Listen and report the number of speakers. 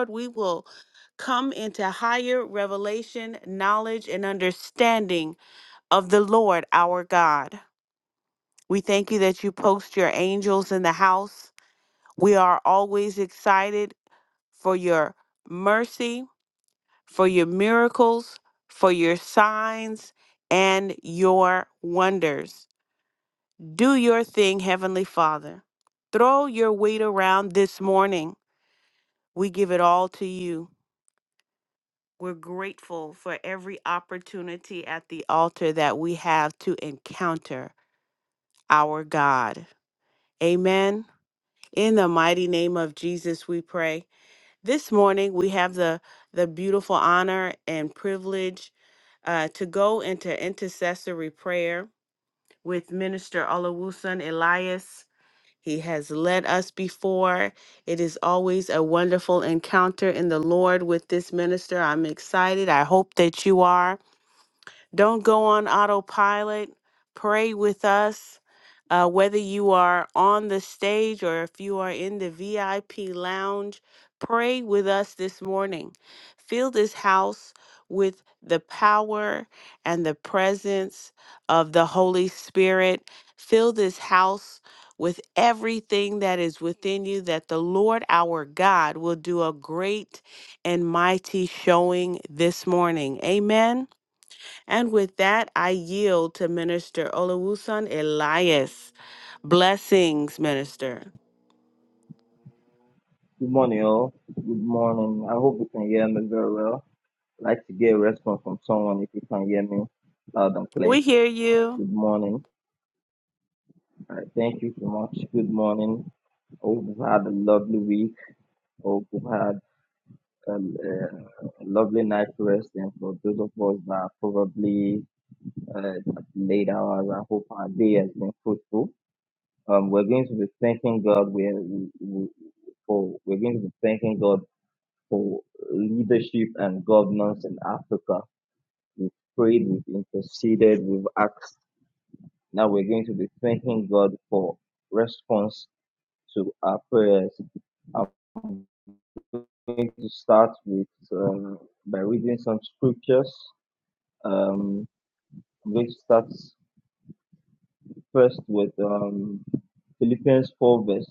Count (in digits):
2